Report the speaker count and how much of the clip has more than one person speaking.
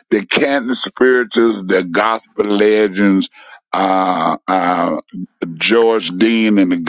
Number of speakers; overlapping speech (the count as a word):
one, no overlap